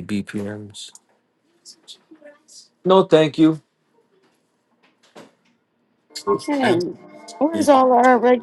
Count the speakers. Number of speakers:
2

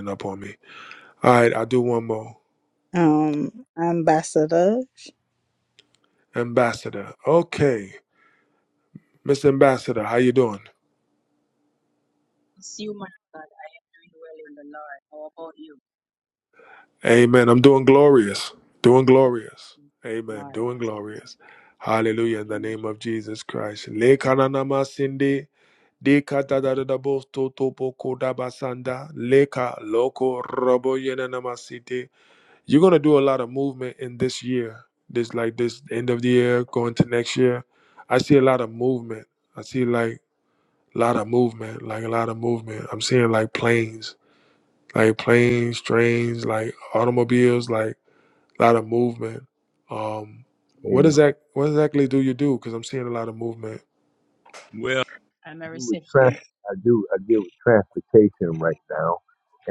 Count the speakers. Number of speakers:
4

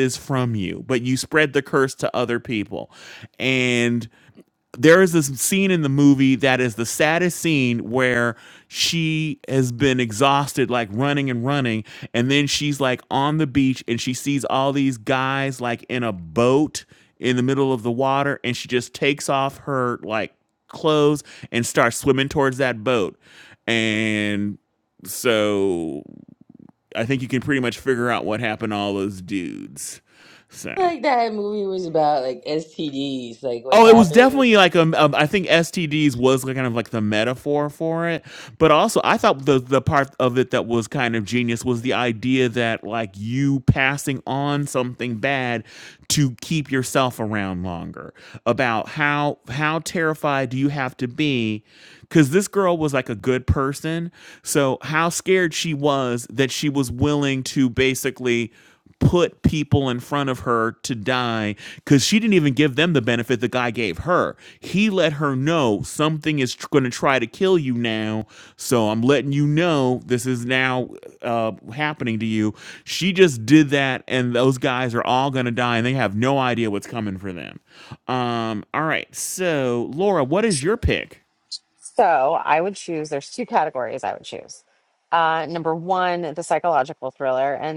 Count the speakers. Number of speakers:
3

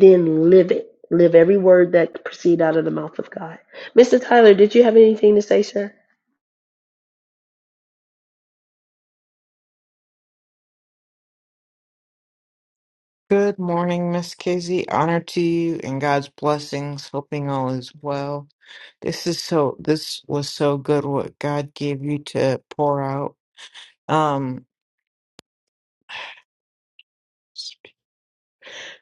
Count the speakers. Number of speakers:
2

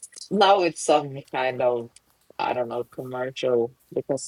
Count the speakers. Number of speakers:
1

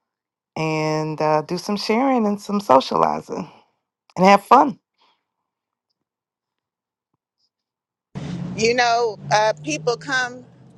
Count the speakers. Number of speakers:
2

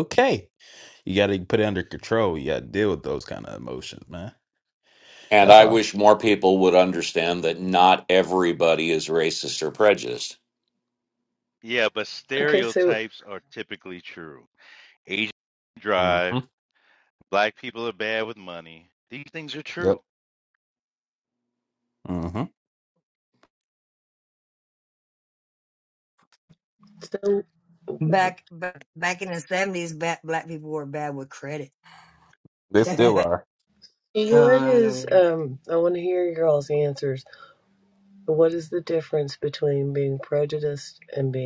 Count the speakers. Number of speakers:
5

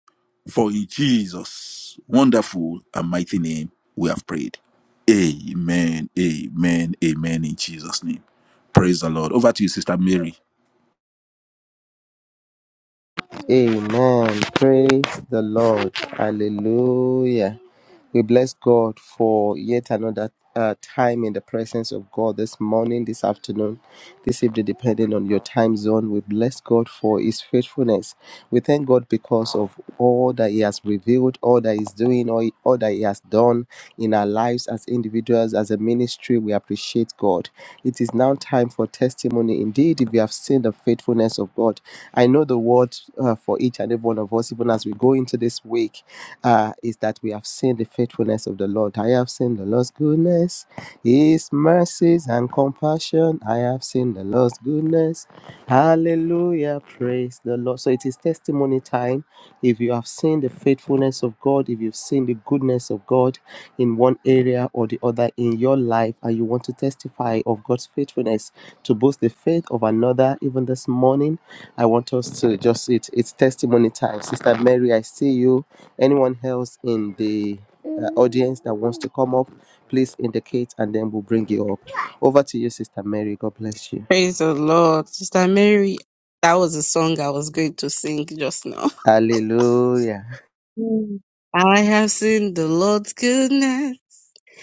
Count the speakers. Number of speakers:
3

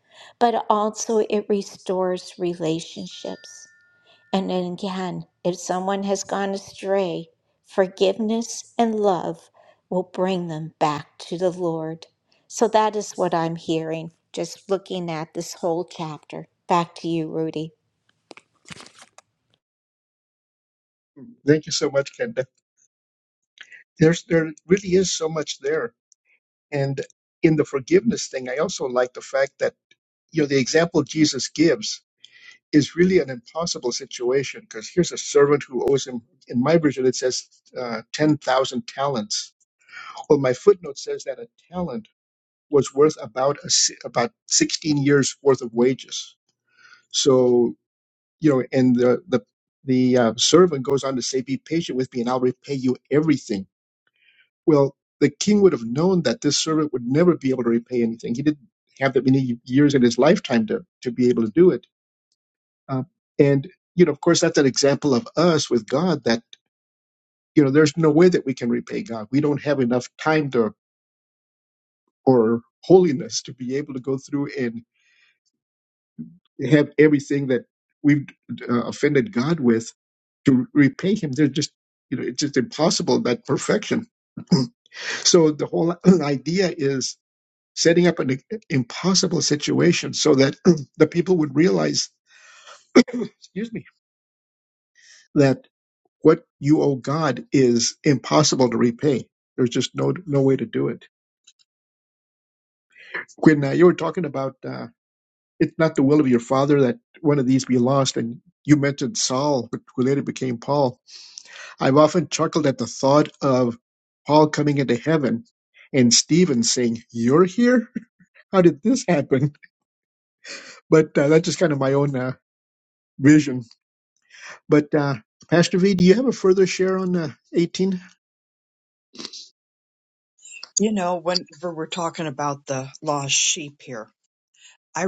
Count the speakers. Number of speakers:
3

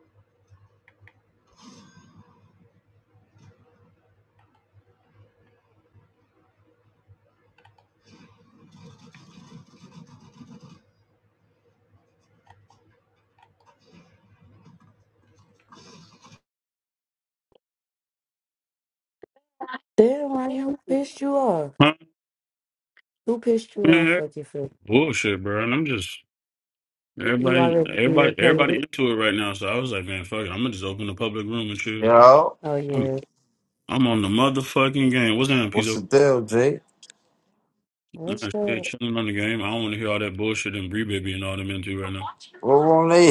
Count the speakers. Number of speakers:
3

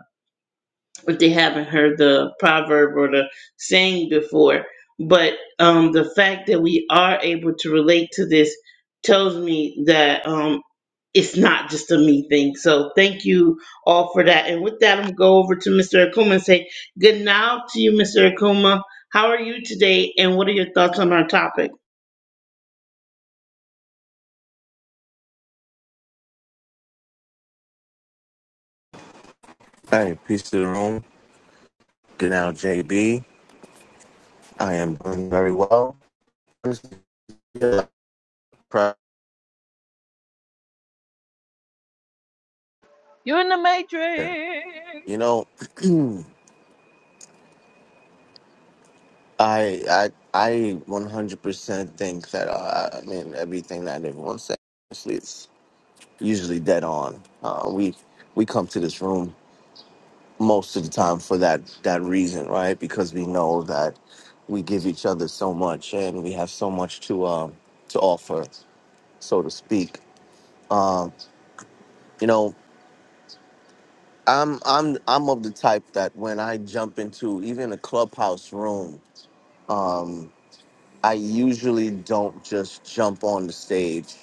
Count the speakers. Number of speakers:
3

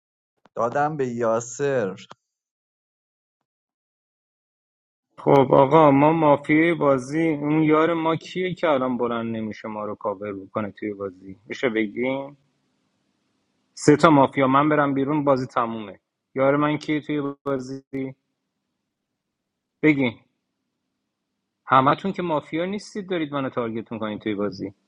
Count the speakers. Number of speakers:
2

